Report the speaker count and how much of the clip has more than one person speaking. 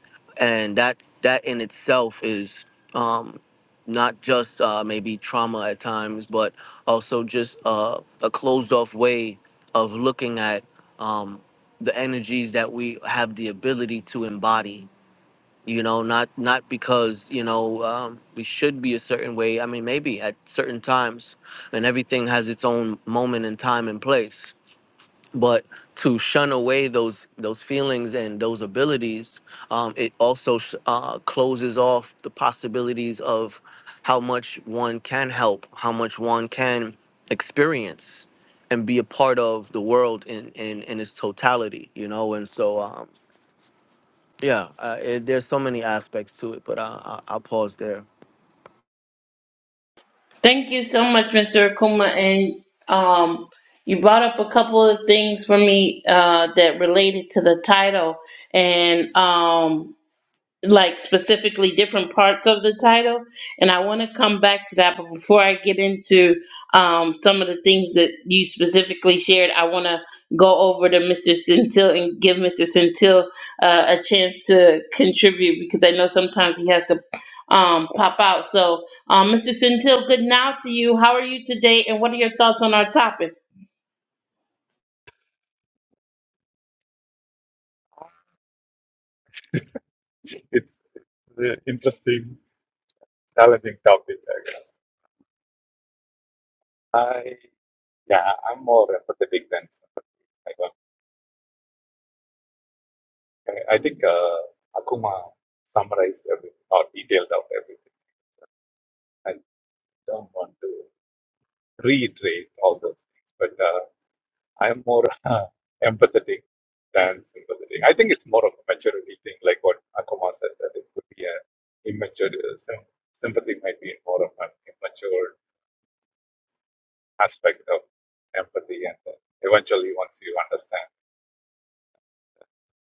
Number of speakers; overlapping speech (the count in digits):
3, no overlap